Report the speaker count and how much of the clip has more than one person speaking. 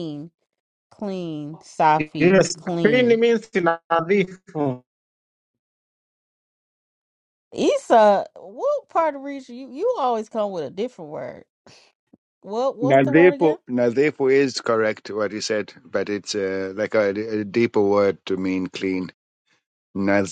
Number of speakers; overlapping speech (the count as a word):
three, about 7%